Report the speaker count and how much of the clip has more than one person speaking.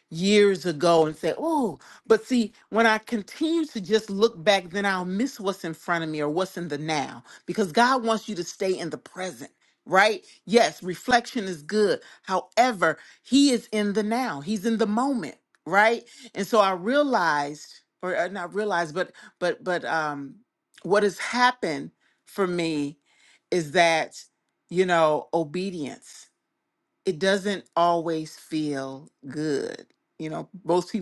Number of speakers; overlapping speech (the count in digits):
1, no overlap